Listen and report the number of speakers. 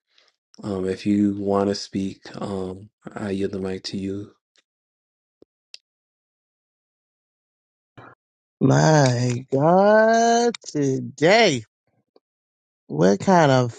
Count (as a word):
two